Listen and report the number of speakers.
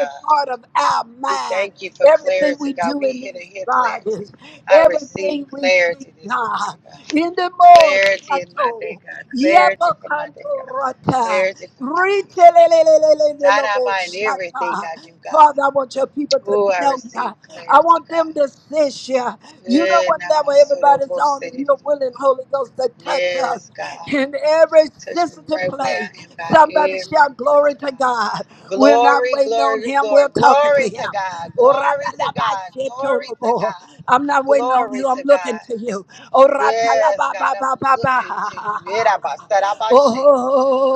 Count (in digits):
2